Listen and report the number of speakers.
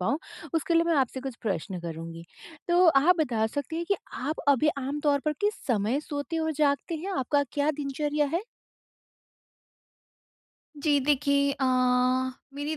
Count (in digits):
2